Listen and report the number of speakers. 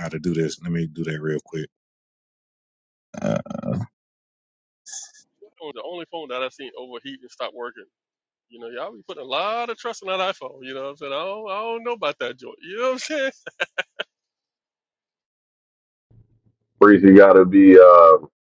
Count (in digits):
3